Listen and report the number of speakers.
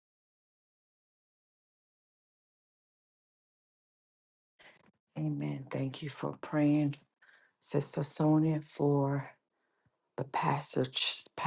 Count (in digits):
1